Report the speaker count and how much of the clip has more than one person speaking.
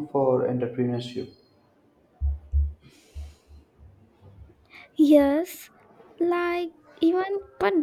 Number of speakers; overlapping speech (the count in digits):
2, no overlap